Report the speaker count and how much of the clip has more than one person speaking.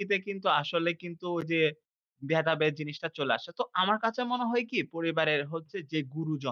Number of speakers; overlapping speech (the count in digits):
1, no overlap